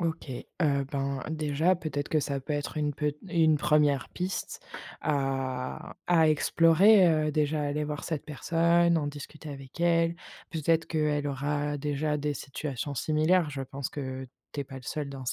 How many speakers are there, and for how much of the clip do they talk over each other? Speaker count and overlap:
1, no overlap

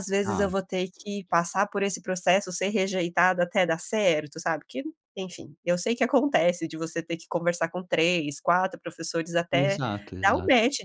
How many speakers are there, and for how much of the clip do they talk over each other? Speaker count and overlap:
2, about 7%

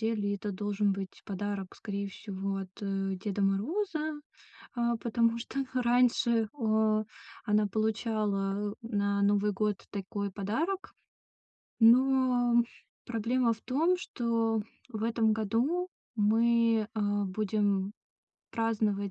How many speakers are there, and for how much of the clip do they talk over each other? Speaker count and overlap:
1, no overlap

